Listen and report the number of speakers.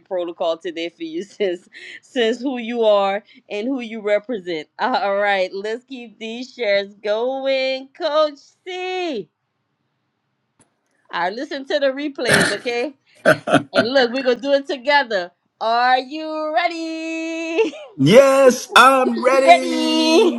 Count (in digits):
2